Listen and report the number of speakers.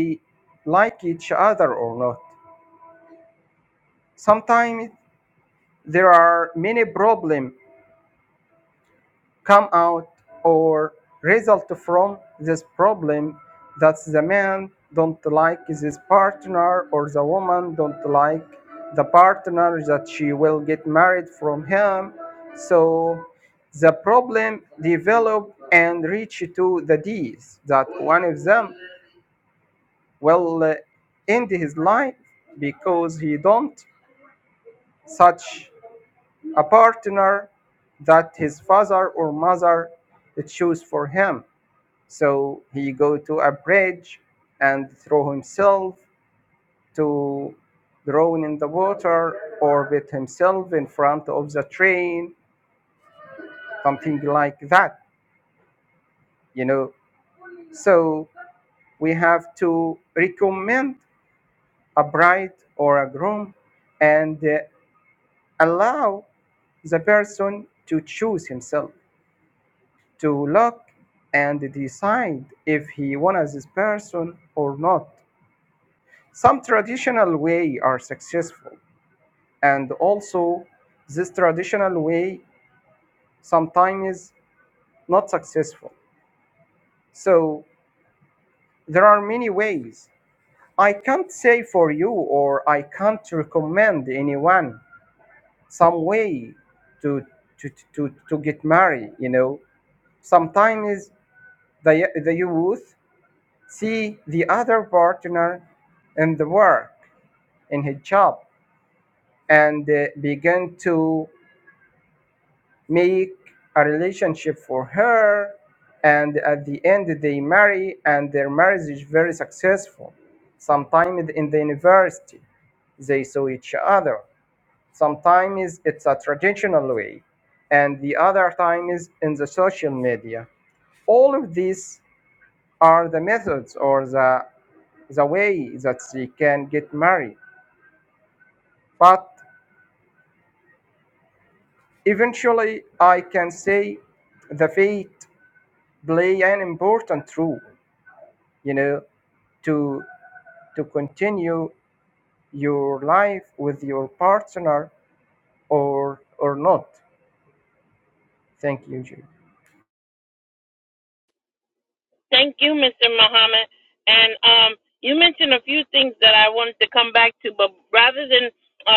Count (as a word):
two